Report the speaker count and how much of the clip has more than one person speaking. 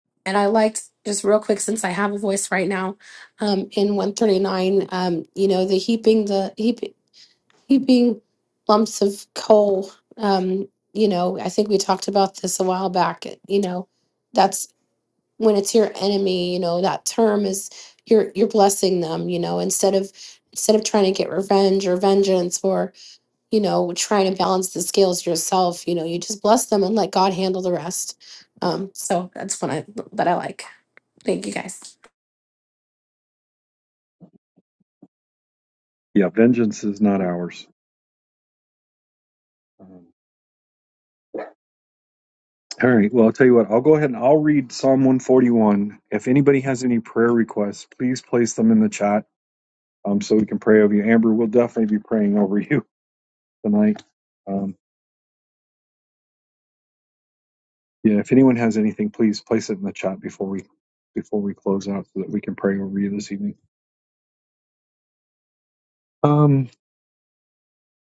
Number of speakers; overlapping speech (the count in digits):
2, no overlap